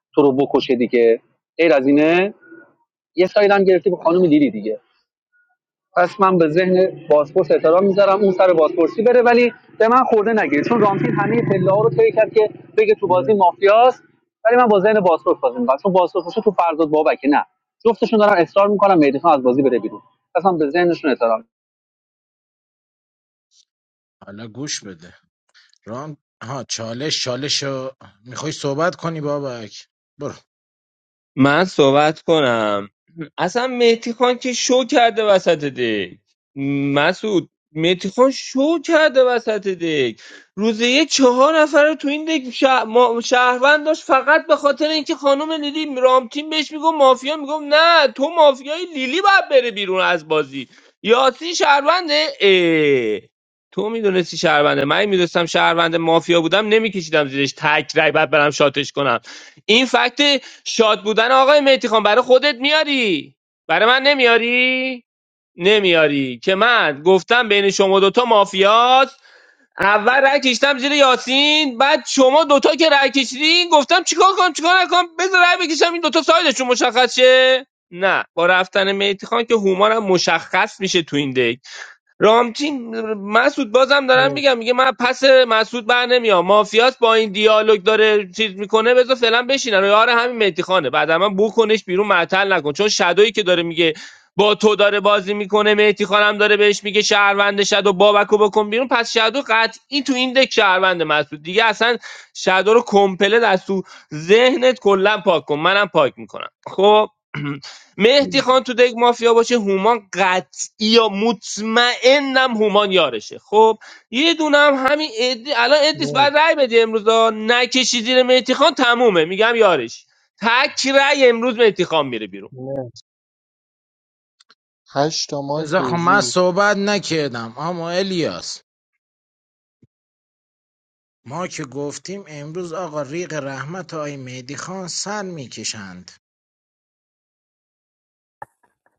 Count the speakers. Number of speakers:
4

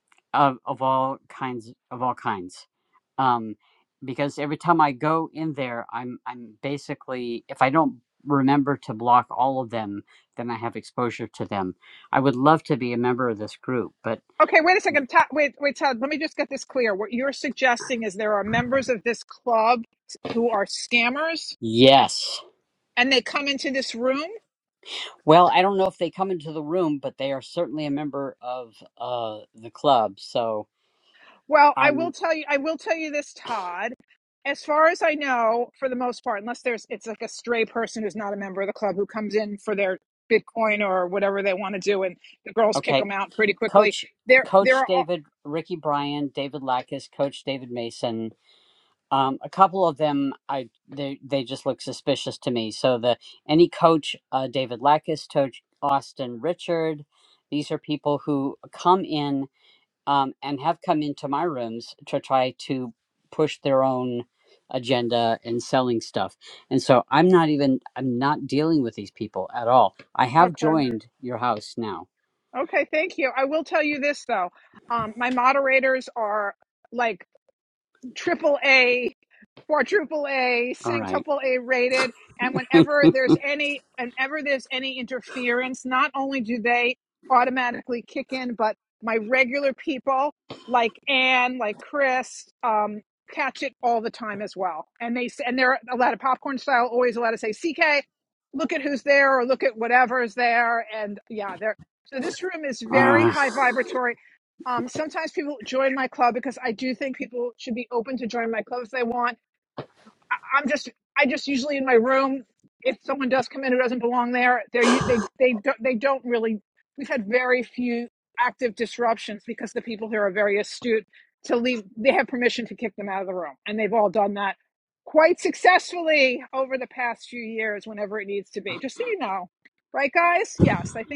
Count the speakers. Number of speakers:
2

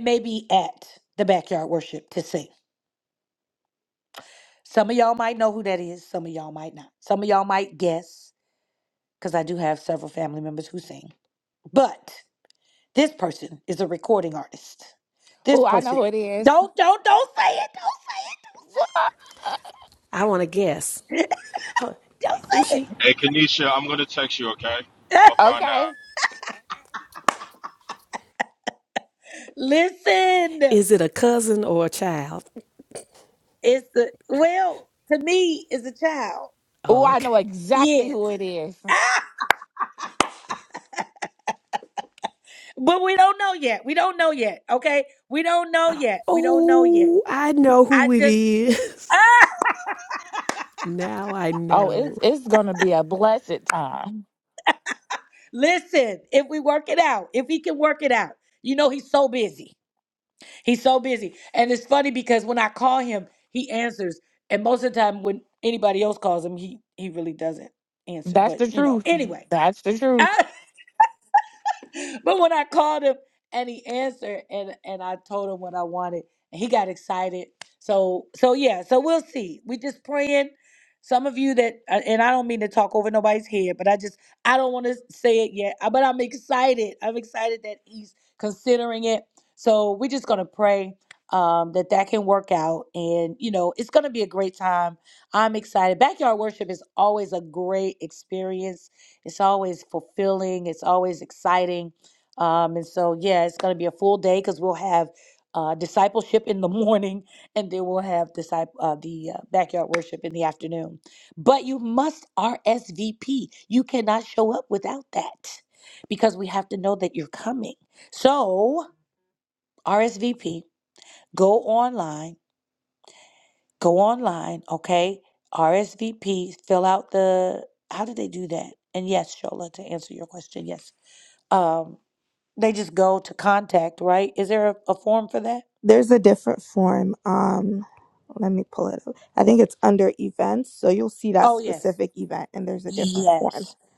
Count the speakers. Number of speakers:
5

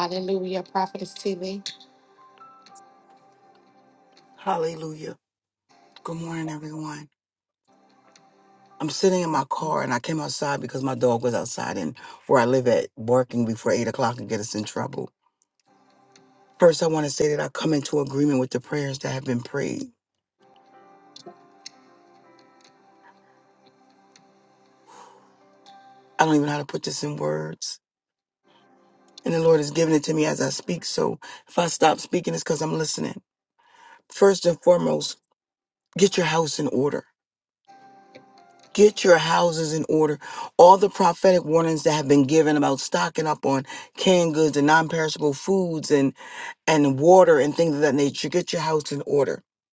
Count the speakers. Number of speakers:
2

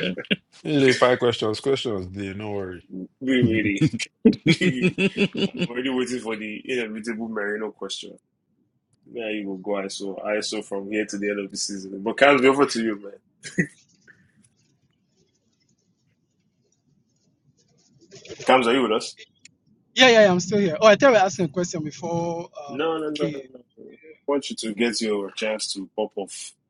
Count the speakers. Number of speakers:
3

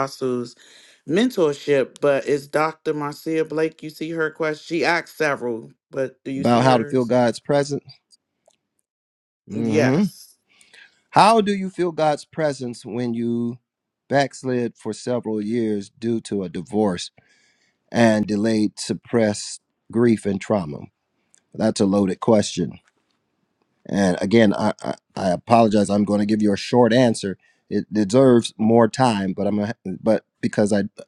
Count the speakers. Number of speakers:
2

